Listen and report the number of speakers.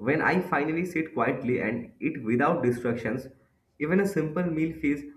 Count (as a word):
one